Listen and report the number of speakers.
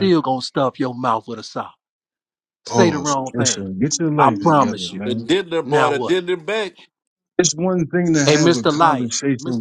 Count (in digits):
3